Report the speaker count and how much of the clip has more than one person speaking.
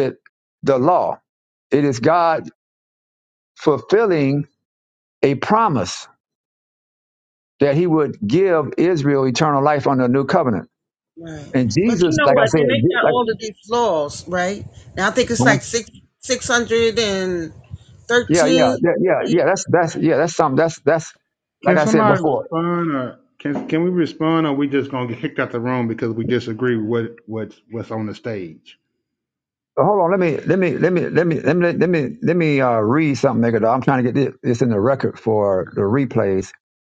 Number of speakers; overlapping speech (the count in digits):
3, about 8%